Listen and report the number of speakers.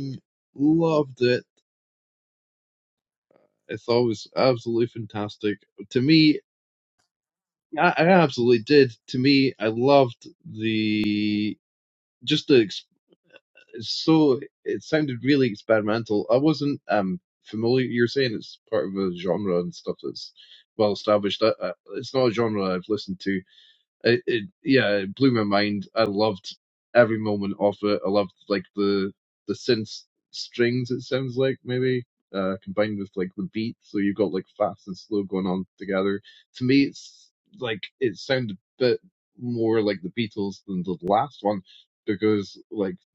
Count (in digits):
1